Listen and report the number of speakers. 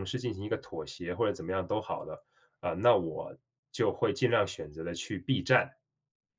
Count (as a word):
one